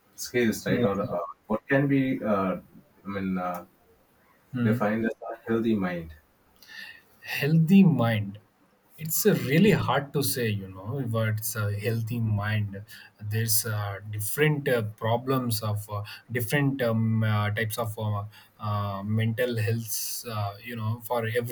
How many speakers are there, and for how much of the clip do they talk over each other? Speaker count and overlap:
two, about 2%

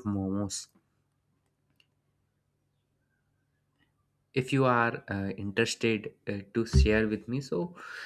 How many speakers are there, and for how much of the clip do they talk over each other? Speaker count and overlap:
one, no overlap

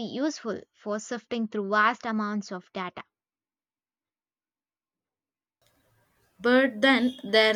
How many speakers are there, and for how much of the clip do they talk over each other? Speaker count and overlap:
two, no overlap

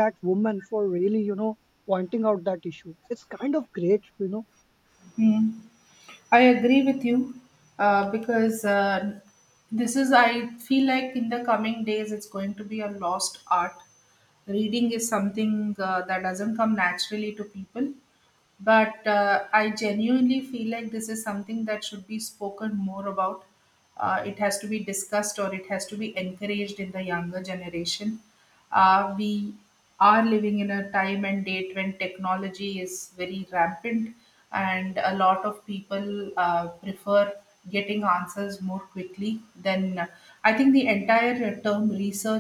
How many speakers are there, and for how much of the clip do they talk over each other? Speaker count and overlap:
two, no overlap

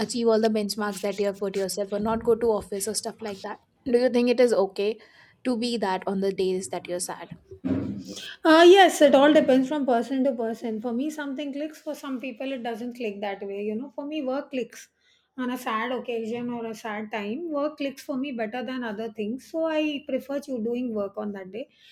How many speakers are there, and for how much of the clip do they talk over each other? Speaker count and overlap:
two, no overlap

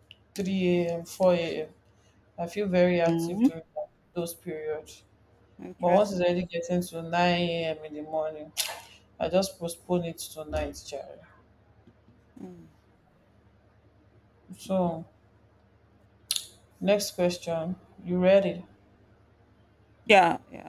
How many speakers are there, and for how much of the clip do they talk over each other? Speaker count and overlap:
two, about 3%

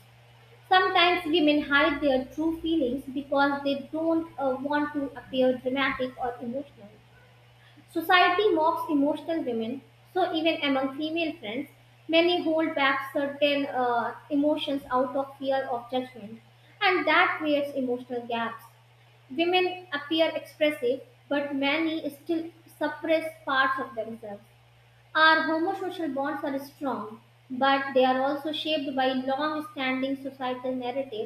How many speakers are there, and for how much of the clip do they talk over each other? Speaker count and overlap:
one, no overlap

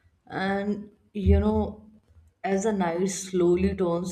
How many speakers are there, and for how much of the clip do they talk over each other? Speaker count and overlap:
one, no overlap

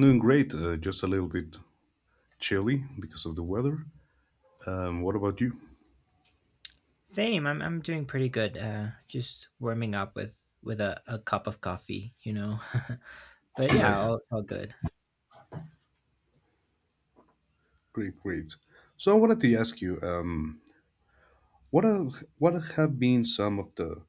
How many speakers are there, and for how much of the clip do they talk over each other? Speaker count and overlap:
two, about 2%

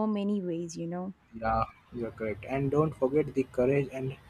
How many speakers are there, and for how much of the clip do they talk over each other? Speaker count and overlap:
two, no overlap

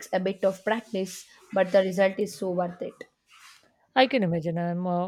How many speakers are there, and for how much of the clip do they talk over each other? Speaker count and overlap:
two, no overlap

